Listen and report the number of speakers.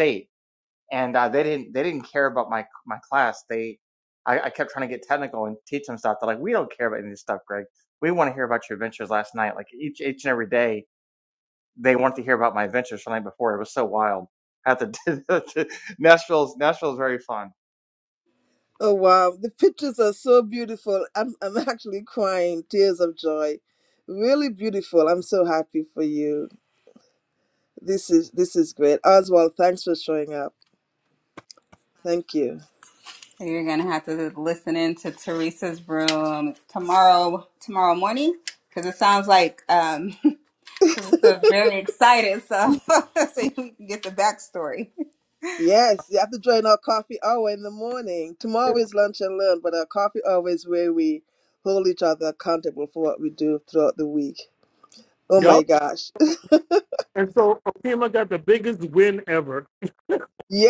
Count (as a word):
four